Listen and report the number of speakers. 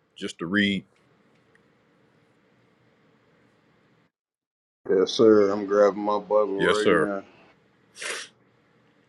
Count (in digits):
2